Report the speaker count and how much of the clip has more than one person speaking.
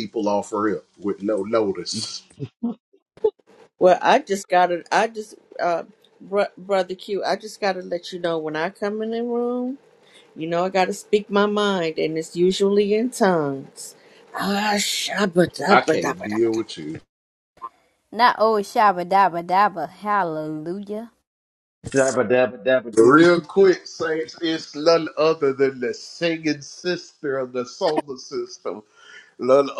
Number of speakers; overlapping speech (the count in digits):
4, about 1%